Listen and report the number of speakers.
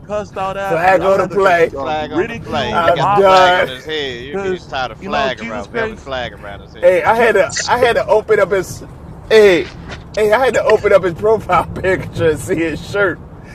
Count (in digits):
3